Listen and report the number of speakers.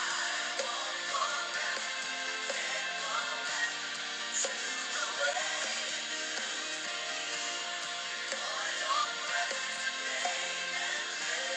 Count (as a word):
zero